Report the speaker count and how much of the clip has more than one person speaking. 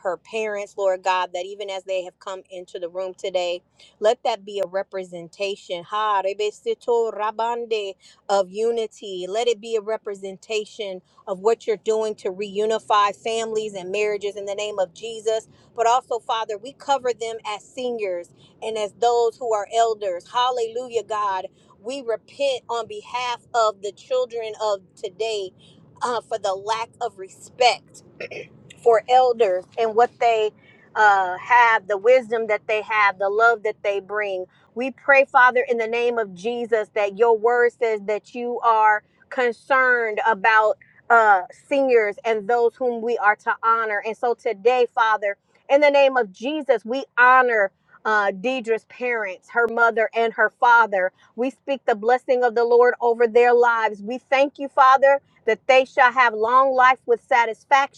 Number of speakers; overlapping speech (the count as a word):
one, no overlap